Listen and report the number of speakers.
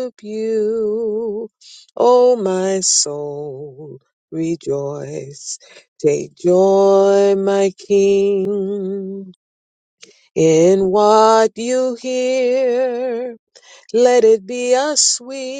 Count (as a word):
one